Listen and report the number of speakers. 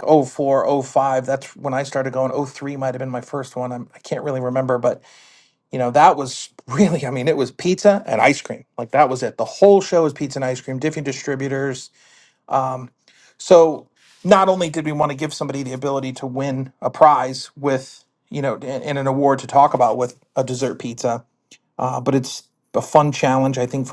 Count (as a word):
one